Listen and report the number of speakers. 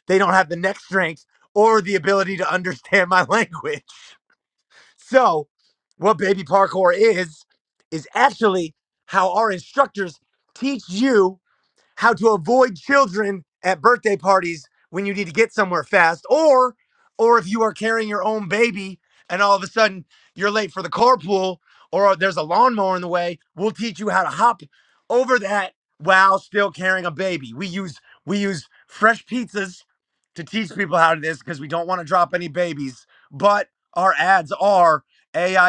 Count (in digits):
1